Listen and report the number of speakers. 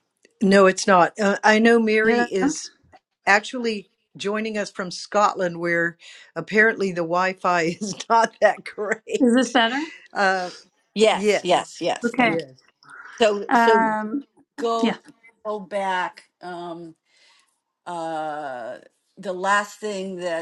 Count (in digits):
3